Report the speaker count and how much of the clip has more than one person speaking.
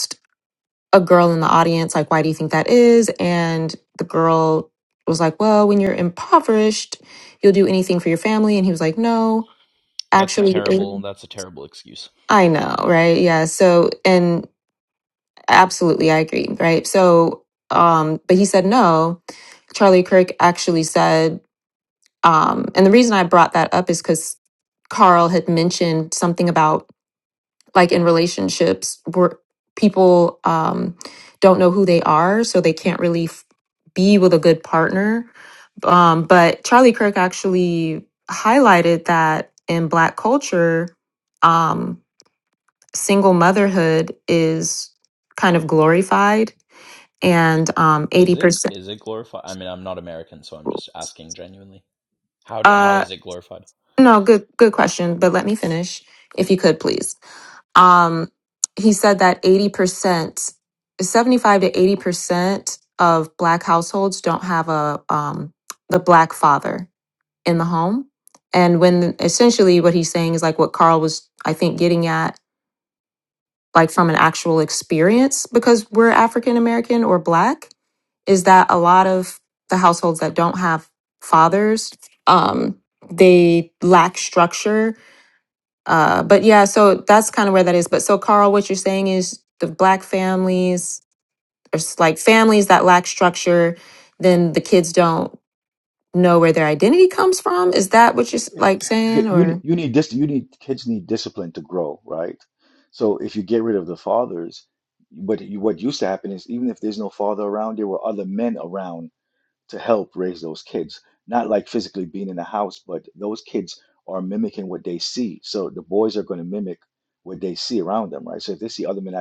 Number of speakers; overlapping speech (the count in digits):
3, about 2%